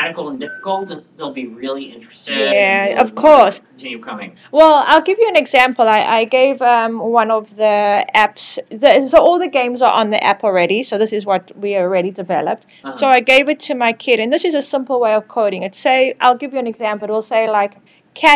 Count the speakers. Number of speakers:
two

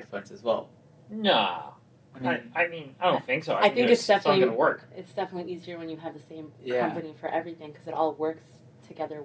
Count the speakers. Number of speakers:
three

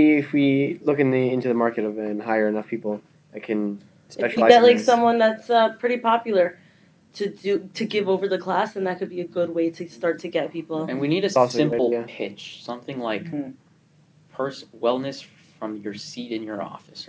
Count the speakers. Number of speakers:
three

